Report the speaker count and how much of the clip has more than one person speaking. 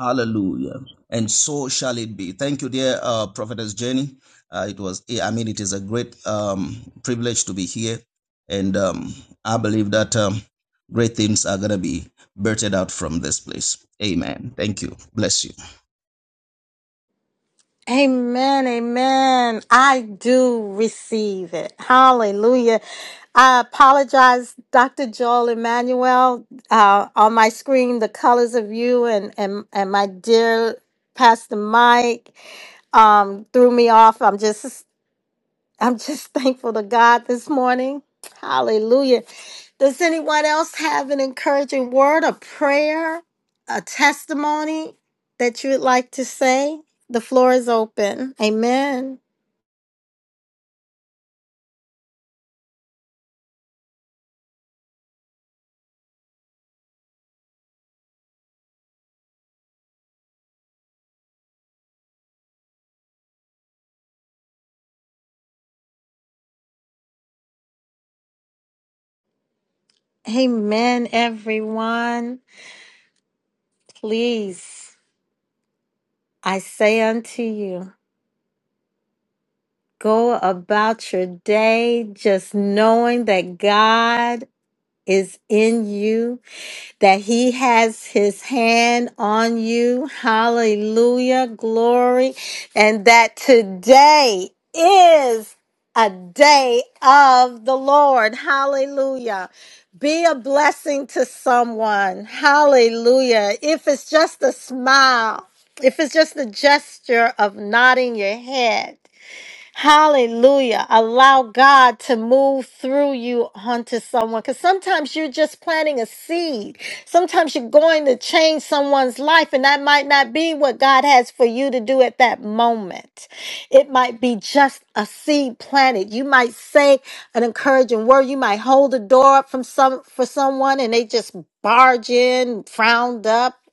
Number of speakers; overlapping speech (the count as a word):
two, no overlap